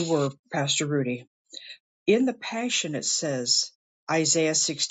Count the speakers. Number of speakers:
1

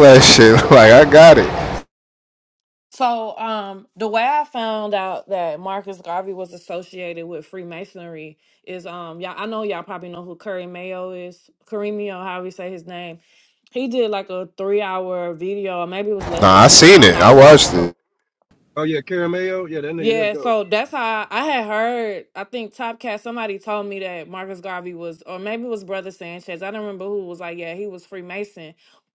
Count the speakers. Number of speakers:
3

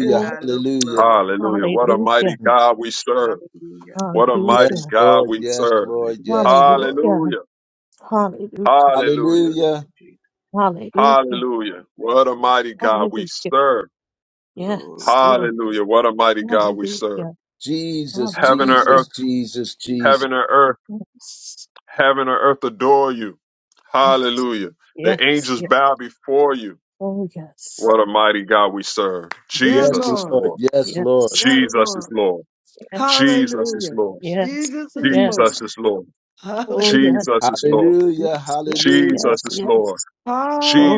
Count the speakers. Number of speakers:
5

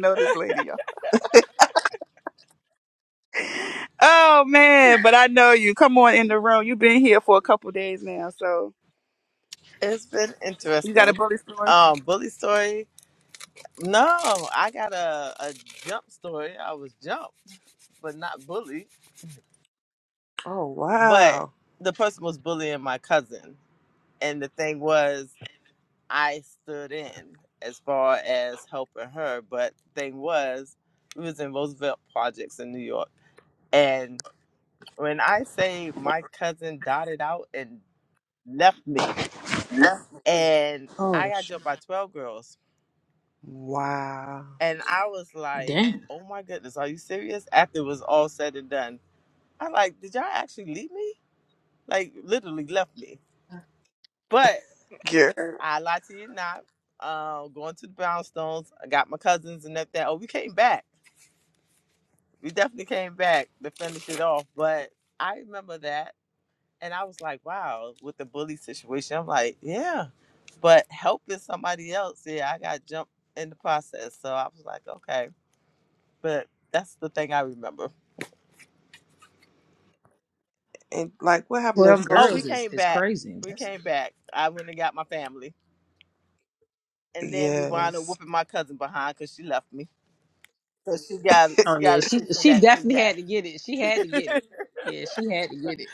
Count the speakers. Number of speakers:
4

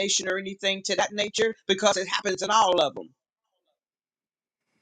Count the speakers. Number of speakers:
1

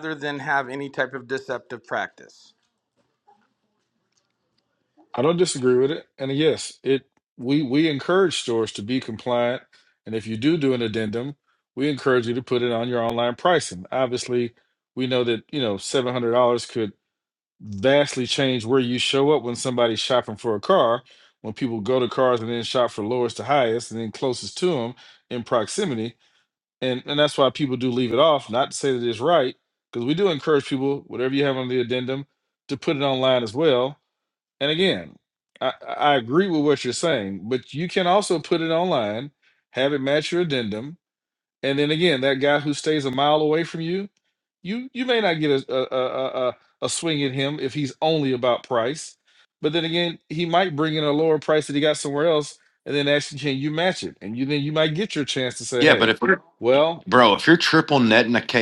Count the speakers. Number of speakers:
3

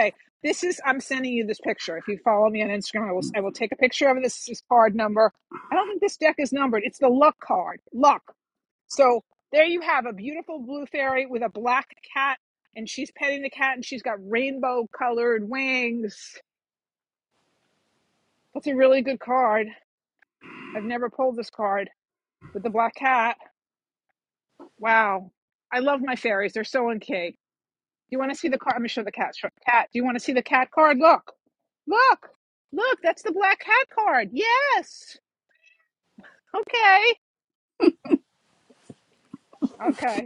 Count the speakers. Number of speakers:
1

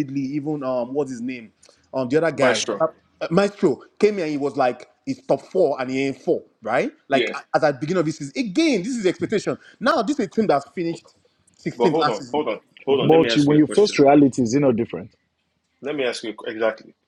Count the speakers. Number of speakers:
3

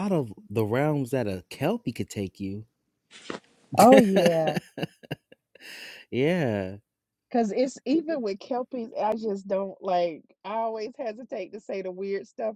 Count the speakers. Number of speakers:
2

